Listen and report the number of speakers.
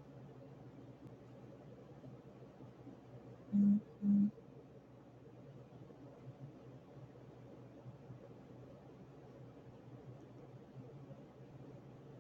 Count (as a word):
zero